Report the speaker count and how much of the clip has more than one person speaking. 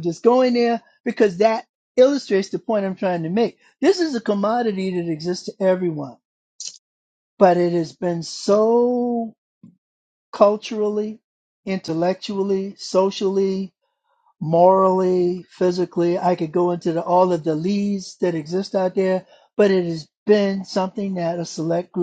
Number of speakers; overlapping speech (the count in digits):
1, no overlap